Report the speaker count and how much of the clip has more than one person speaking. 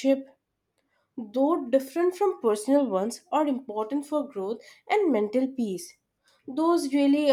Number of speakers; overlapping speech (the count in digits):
1, no overlap